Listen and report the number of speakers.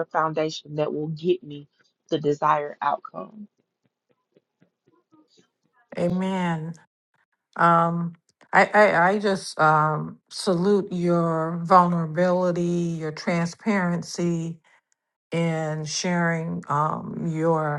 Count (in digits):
2